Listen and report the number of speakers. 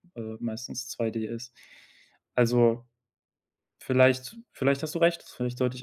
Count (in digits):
1